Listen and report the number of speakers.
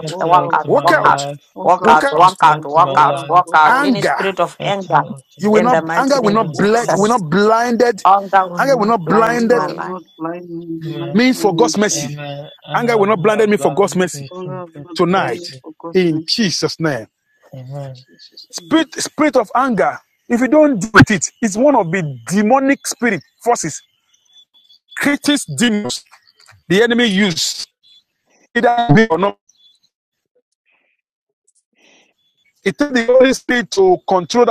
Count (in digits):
4